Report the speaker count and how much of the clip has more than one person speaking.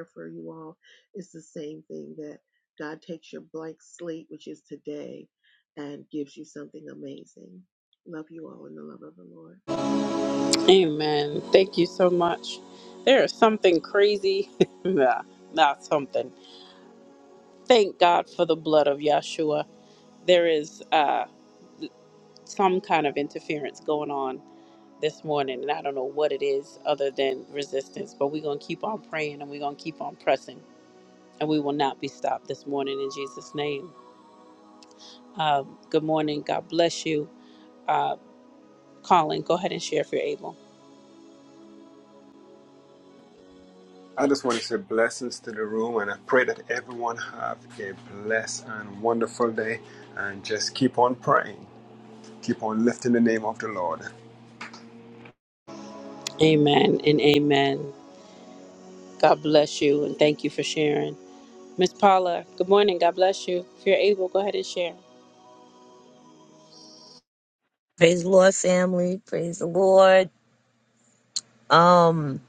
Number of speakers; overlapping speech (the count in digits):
4, no overlap